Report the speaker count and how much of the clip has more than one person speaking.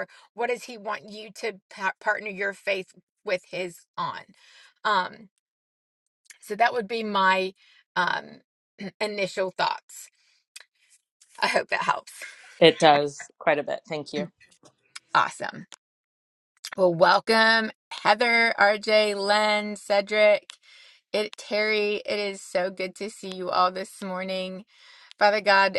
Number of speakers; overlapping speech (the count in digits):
2, no overlap